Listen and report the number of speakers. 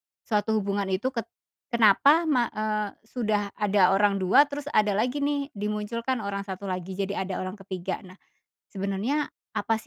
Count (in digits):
1